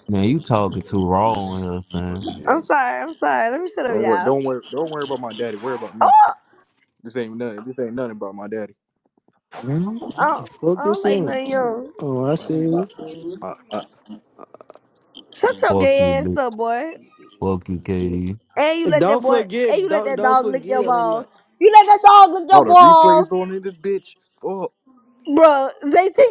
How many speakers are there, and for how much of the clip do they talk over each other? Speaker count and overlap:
four, about 20%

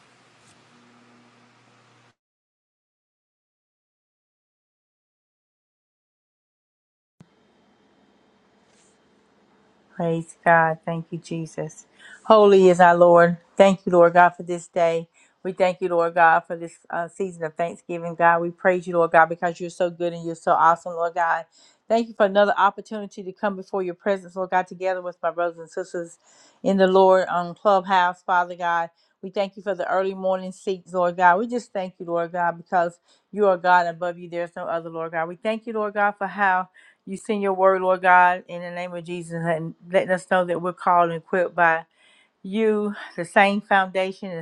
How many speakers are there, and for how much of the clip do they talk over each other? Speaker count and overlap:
one, no overlap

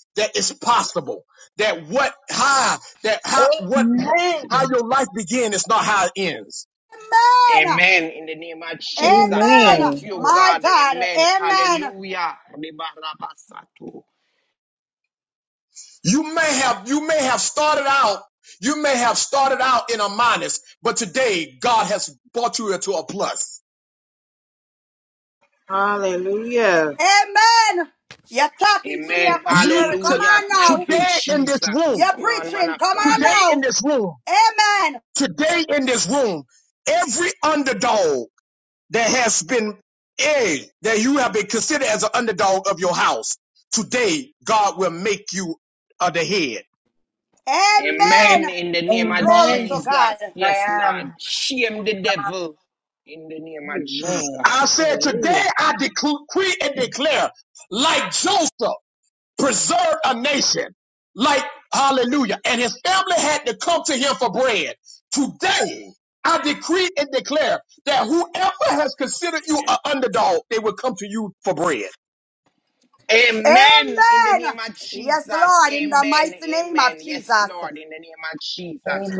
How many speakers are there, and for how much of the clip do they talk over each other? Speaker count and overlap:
five, about 20%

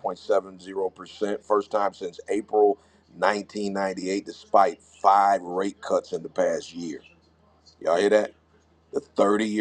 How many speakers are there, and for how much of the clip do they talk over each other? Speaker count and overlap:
one, no overlap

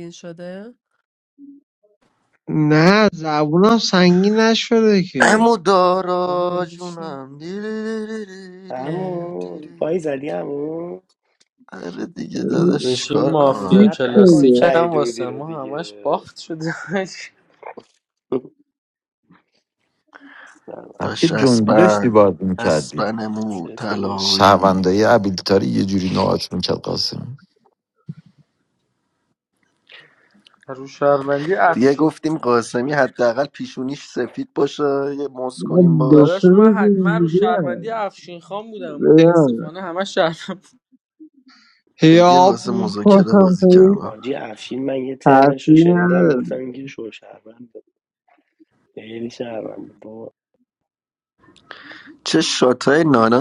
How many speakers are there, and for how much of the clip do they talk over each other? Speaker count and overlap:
six, about 26%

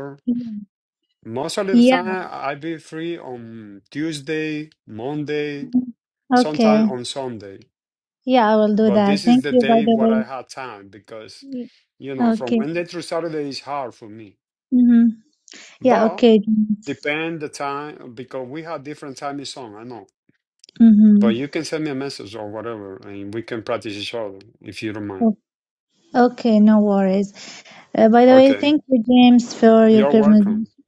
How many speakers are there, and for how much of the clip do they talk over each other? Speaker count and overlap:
two, about 15%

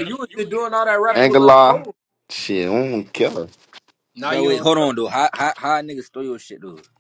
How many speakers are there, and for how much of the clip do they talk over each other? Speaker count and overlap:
three, about 15%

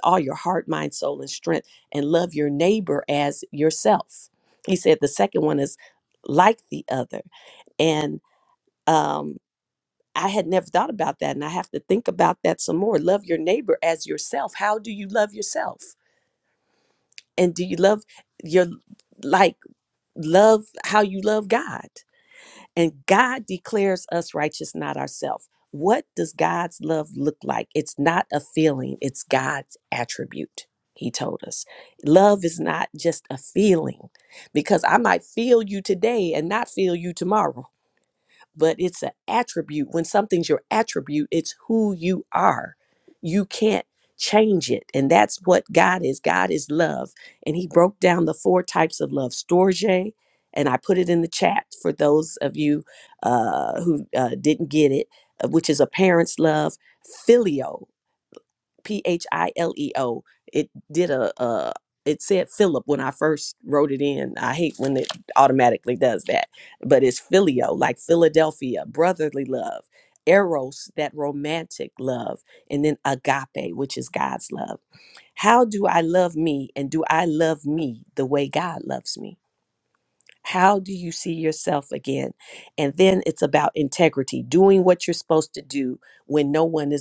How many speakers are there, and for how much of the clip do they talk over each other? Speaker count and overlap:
one, no overlap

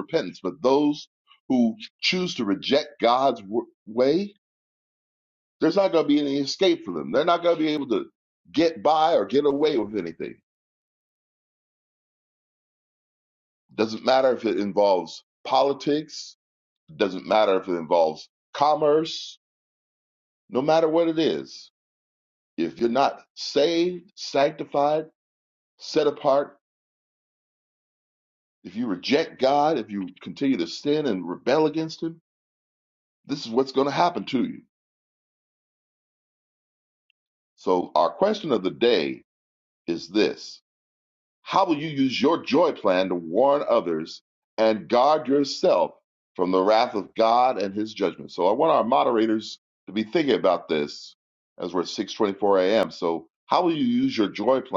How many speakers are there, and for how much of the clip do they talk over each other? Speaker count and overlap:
one, no overlap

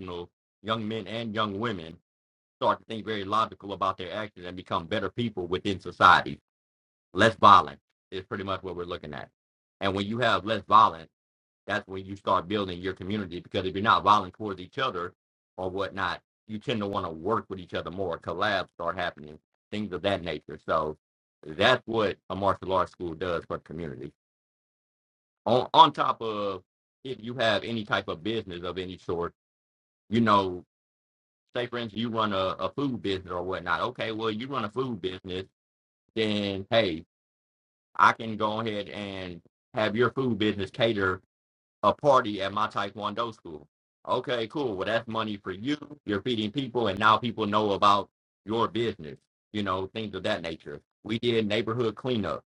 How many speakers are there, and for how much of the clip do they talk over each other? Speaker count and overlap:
one, no overlap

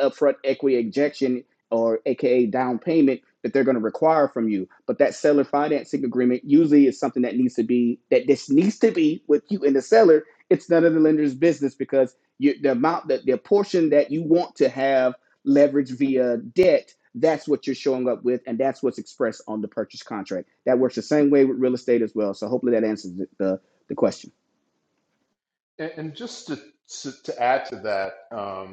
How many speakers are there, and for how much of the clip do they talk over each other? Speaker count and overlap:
two, no overlap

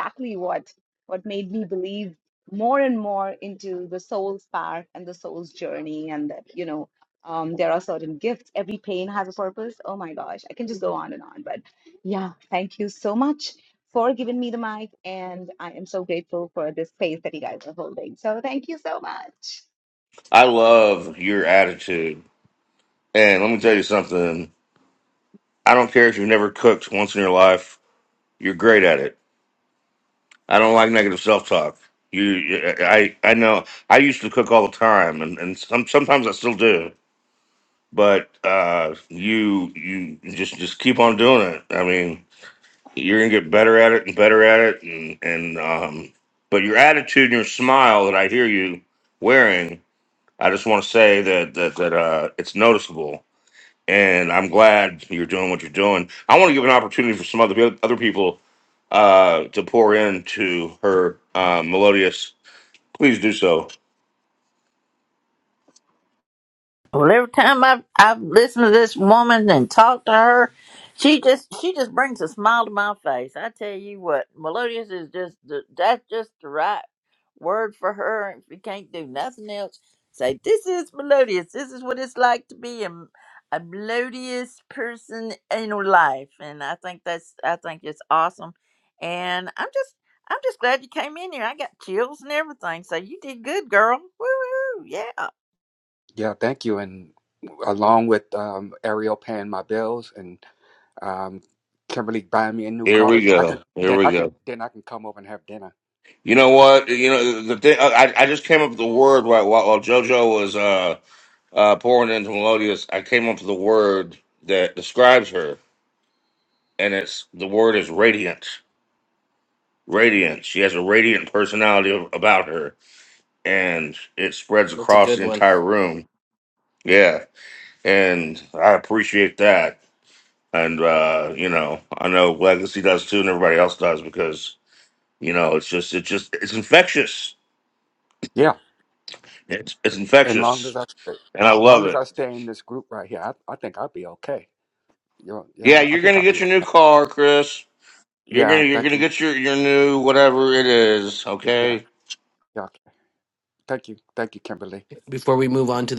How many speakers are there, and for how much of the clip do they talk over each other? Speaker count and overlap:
five, about 3%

